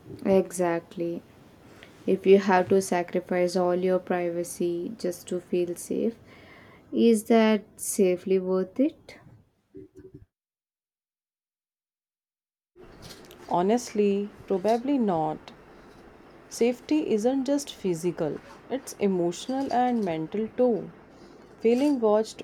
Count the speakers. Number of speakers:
two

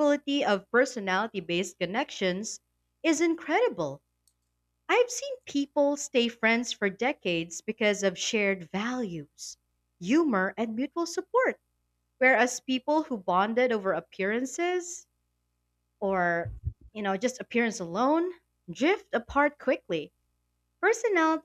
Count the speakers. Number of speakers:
one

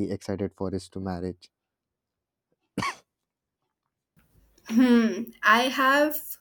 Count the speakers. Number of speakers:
two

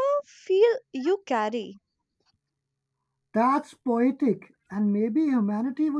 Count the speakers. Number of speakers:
two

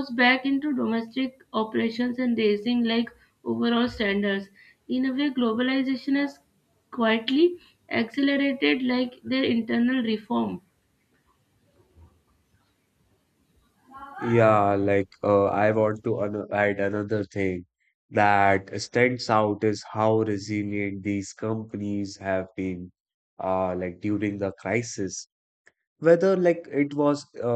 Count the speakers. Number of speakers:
two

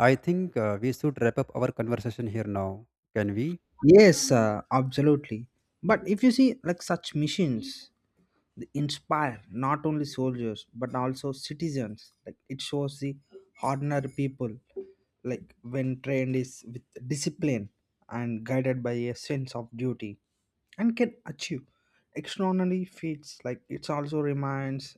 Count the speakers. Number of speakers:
two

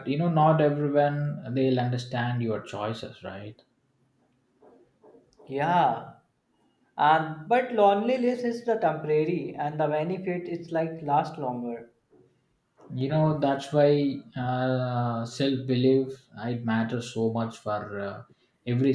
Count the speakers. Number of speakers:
two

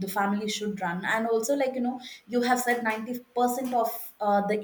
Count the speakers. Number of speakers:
one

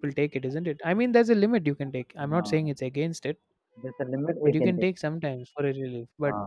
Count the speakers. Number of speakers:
two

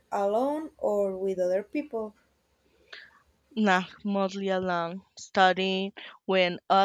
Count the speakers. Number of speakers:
two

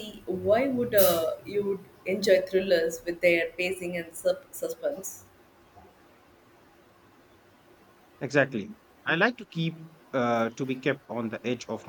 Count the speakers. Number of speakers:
two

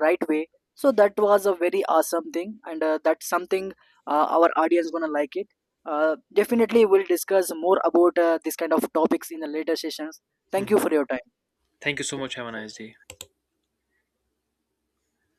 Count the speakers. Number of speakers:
two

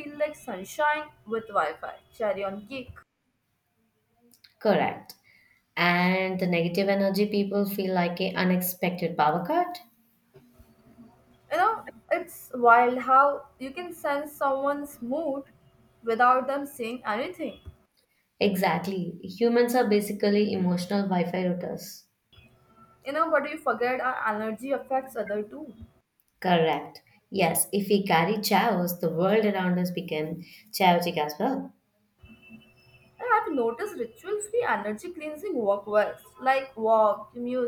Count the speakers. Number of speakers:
two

